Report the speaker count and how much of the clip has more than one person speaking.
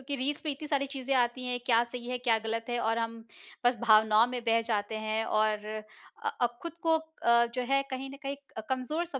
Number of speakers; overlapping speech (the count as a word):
one, no overlap